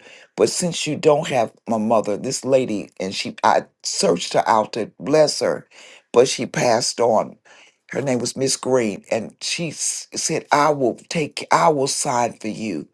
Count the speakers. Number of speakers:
1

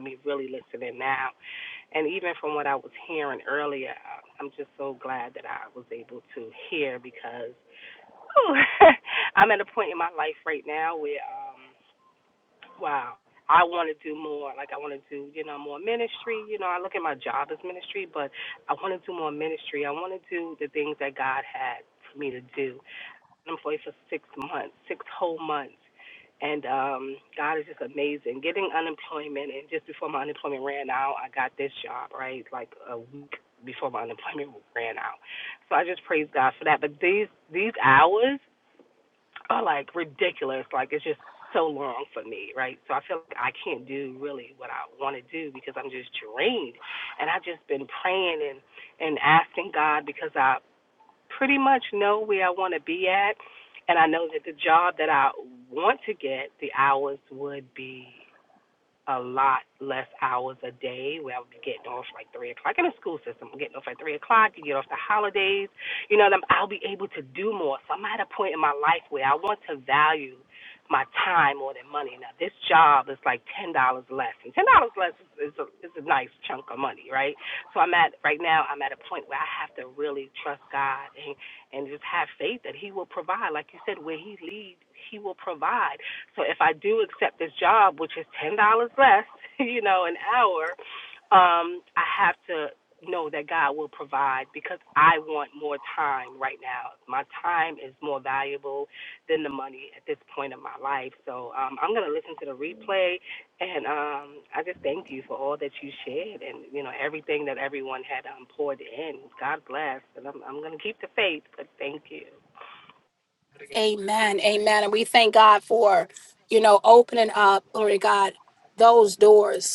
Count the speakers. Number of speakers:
2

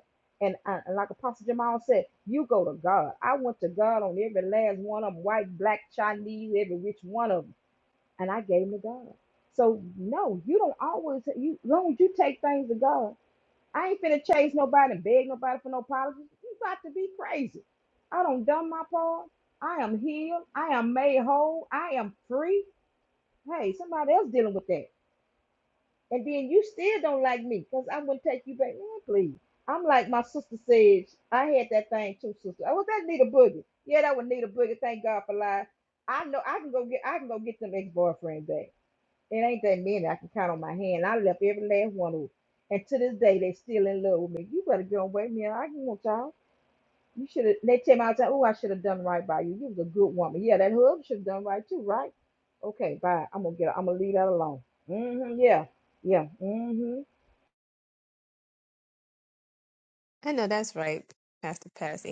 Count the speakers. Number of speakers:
2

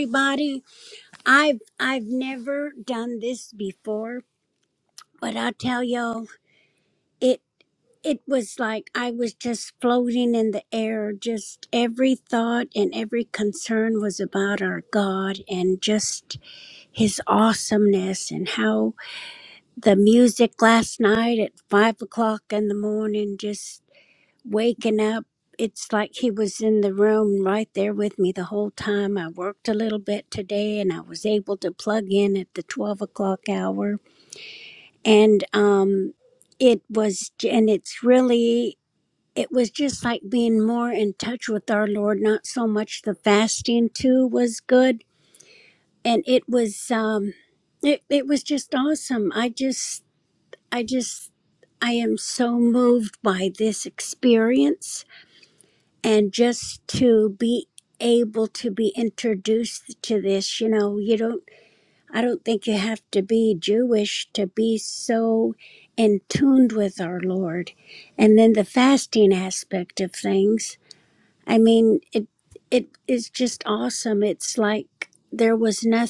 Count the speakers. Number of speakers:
1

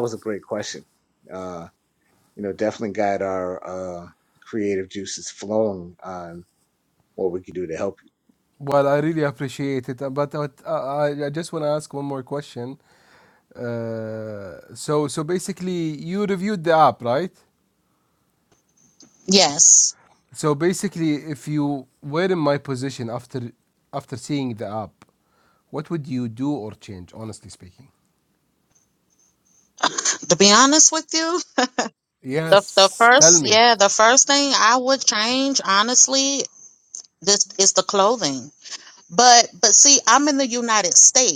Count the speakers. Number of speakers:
3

